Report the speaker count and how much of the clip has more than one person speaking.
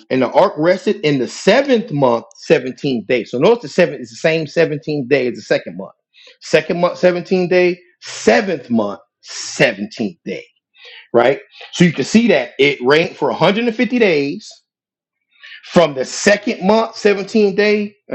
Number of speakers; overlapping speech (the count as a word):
one, no overlap